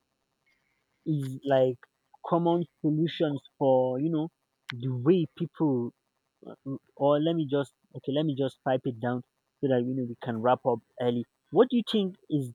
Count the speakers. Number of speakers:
one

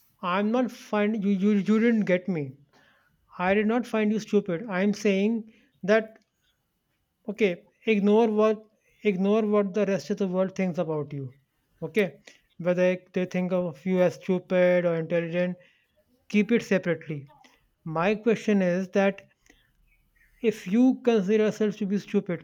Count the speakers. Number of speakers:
one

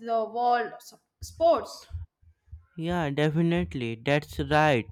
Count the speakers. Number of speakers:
two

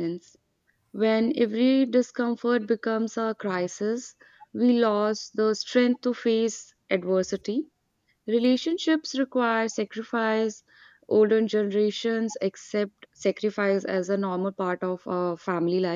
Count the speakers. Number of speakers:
one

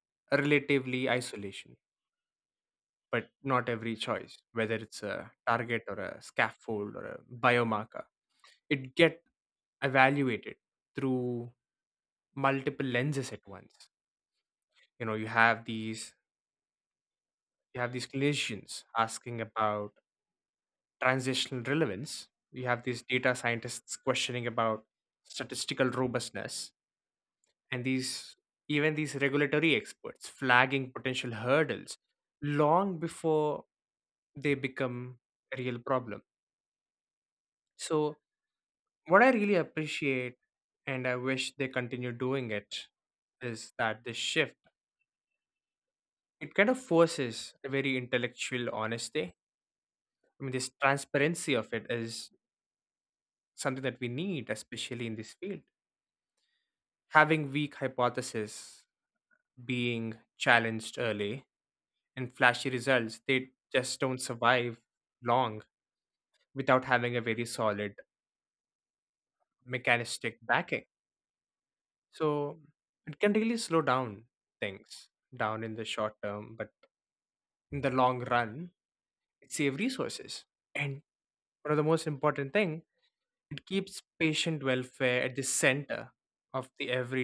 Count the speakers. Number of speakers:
one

